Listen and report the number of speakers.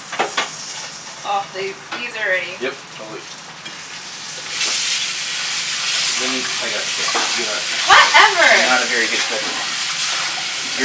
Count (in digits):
2